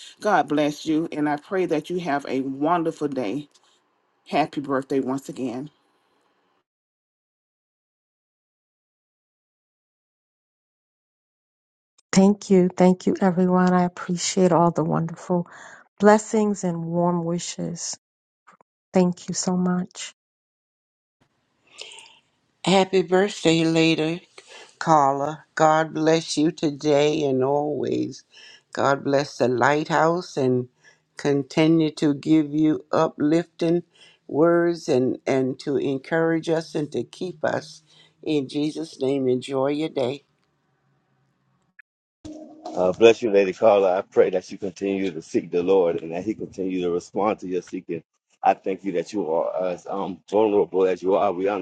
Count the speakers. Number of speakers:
4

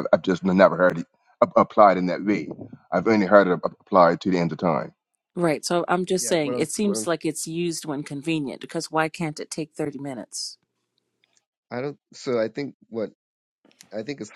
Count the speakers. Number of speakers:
3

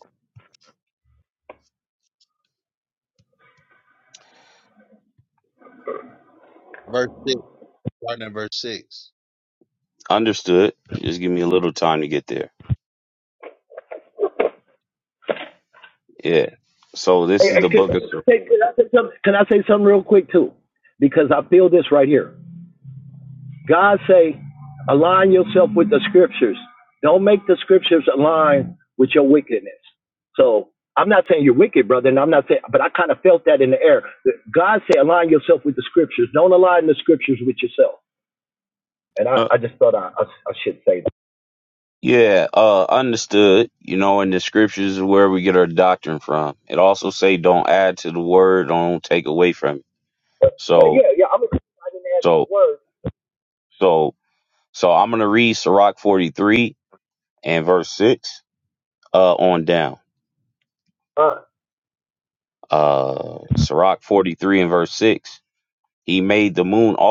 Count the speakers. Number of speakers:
3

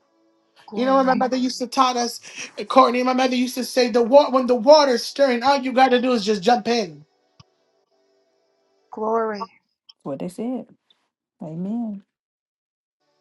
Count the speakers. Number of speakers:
3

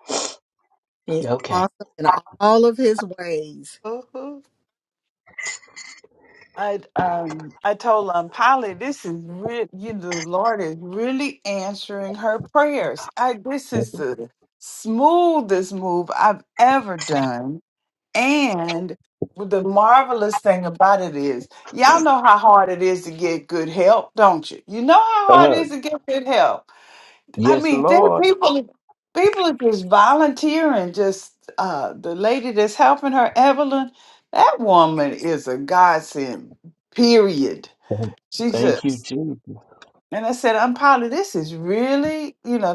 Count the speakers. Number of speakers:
3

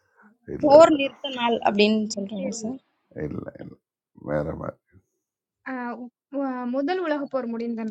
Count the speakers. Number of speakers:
3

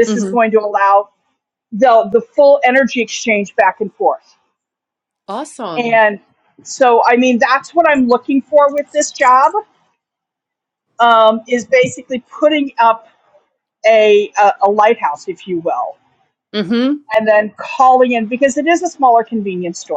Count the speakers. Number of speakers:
2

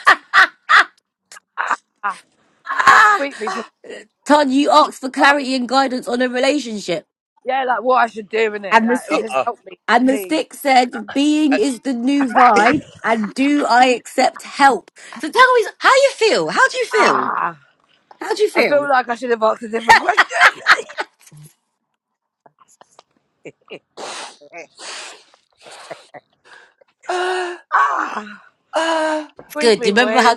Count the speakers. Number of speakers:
3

